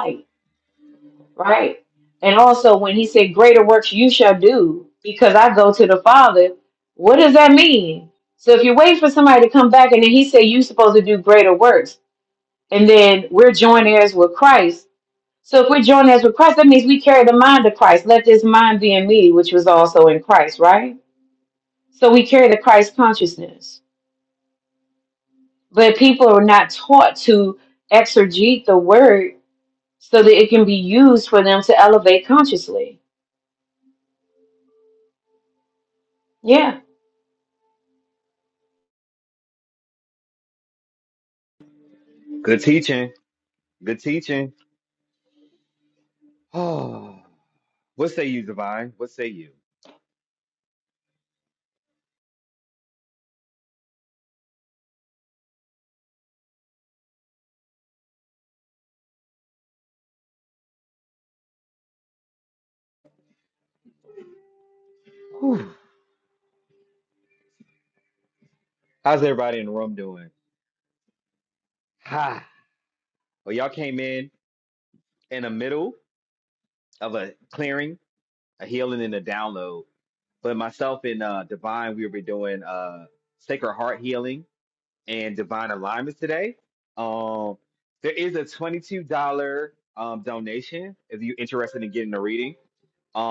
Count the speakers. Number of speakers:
2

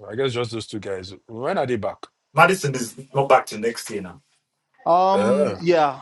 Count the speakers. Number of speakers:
3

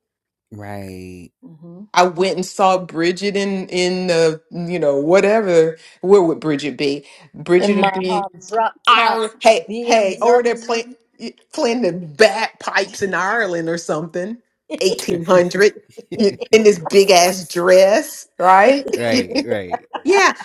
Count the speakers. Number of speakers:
3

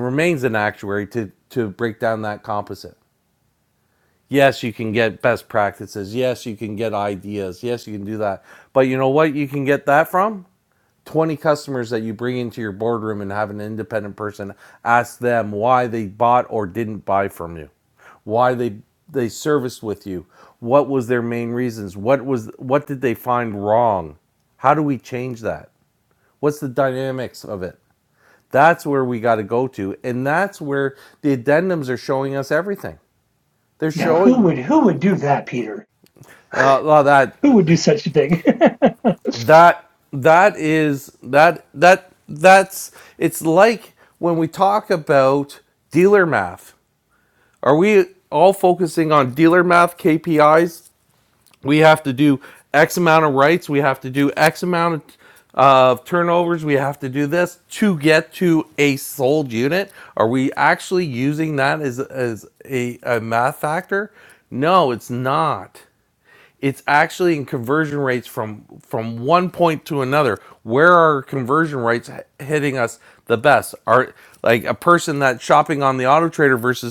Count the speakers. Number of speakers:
2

